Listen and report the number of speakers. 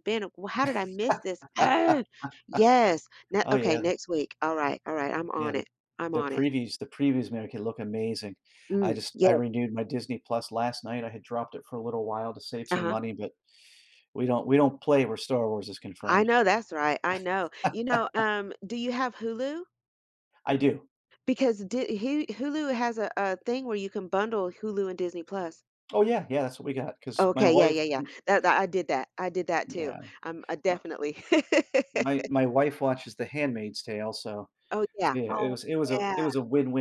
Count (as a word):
two